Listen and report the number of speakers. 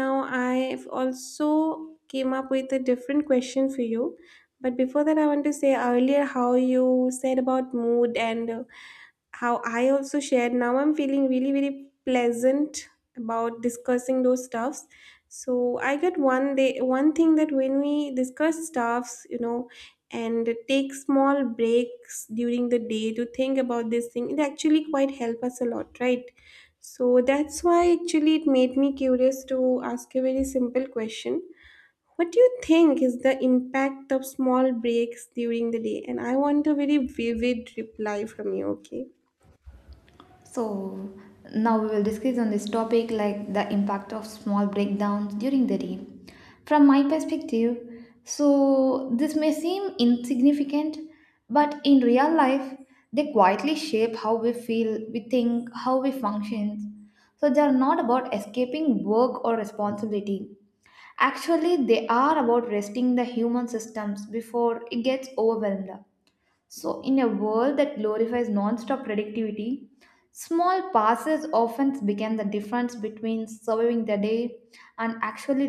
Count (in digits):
2